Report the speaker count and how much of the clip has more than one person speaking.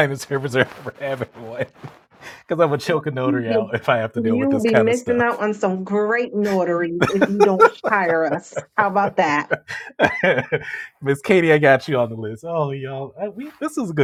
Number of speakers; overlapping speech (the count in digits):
2, about 13%